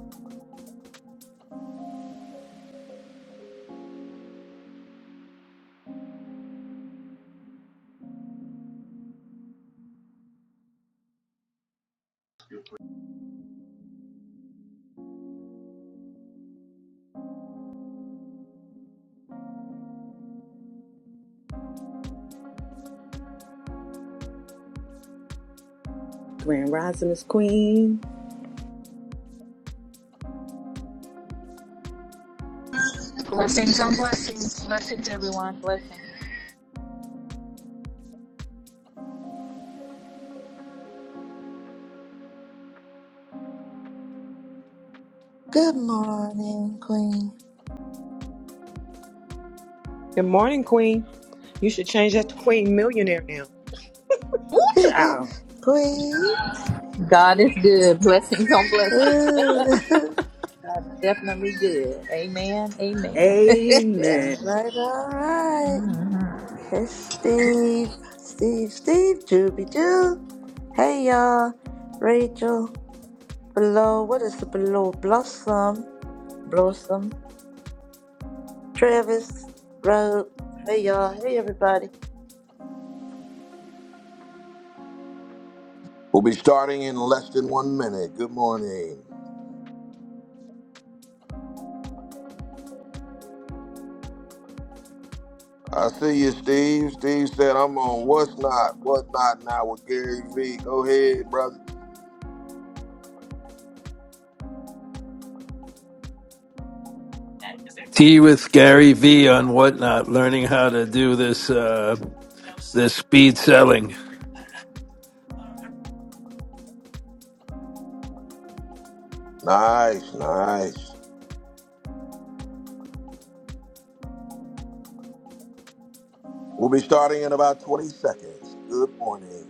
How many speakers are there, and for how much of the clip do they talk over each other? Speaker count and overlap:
6, under 1%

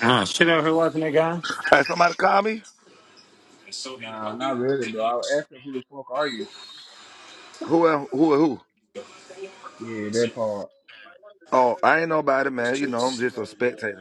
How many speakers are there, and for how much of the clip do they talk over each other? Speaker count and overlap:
3, no overlap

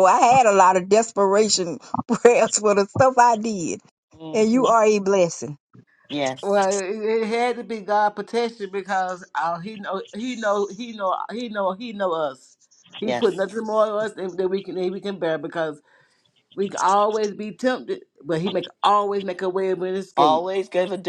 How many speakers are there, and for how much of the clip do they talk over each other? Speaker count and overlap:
3, about 4%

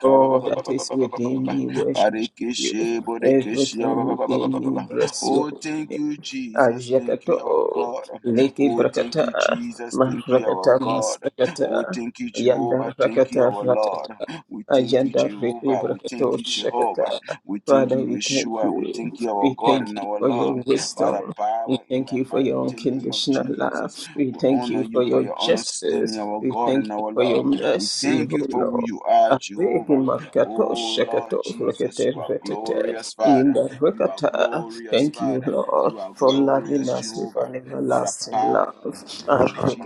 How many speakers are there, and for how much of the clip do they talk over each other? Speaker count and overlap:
2, about 70%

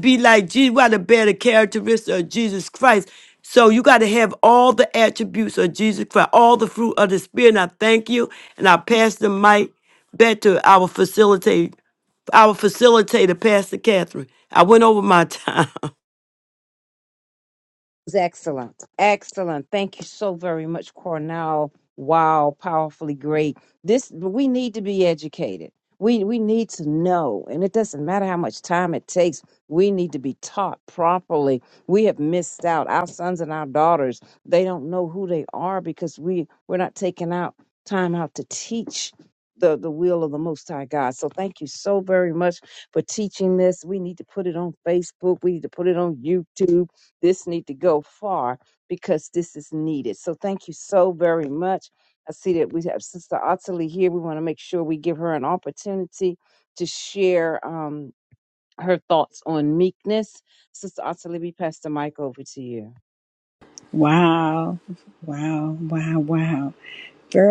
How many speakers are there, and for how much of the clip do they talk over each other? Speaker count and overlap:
3, no overlap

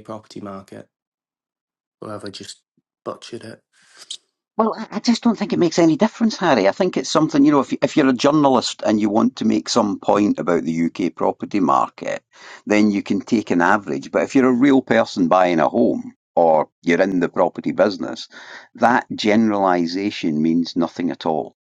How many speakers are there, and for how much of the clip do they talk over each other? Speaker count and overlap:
2, no overlap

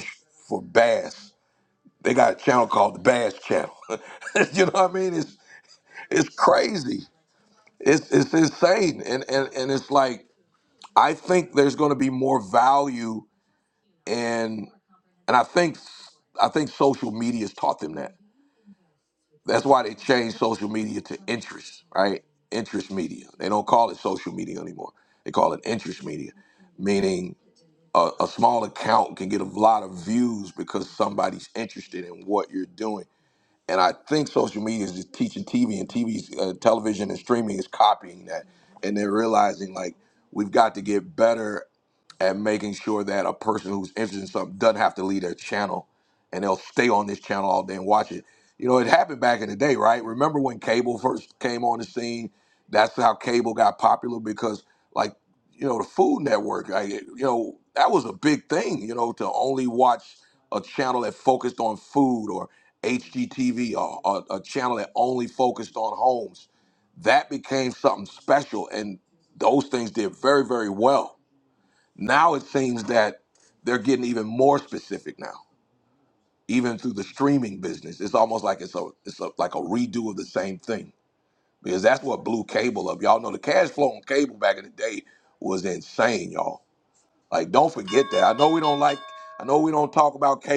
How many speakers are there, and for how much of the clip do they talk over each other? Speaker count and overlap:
1, no overlap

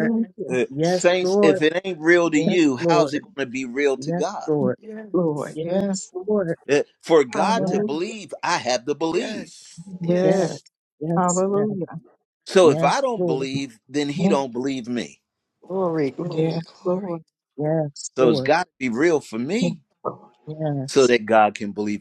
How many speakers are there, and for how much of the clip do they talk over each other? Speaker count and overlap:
4, about 34%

